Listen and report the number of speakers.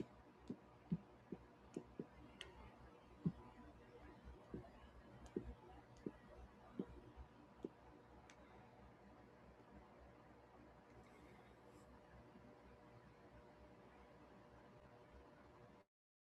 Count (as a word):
zero